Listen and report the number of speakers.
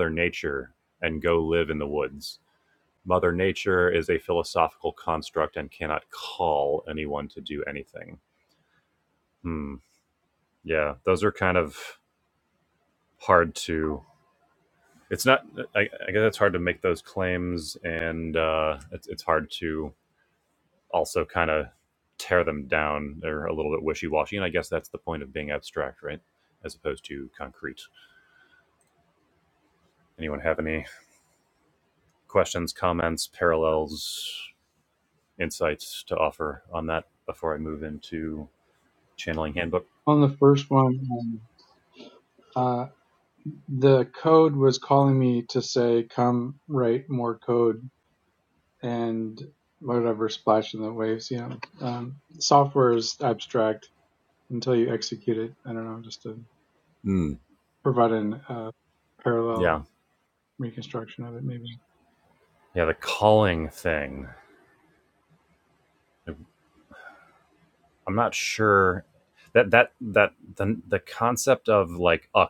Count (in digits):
2